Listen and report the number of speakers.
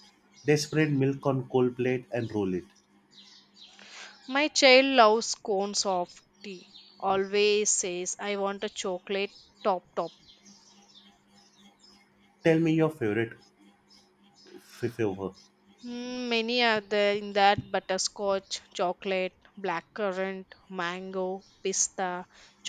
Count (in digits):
2